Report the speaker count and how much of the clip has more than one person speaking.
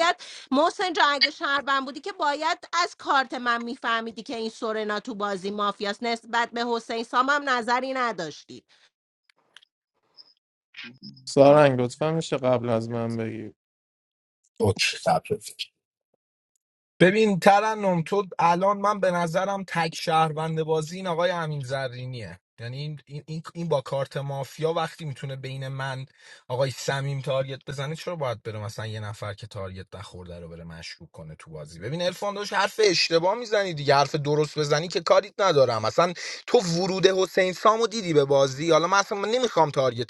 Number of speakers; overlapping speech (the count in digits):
3, no overlap